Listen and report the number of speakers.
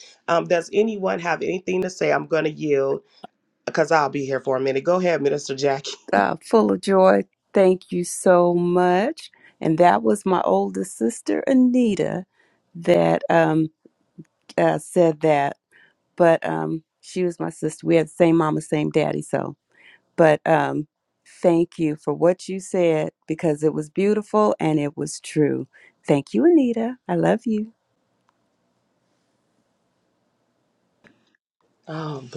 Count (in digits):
2